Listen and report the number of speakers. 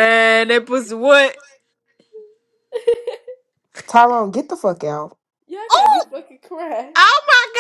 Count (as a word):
three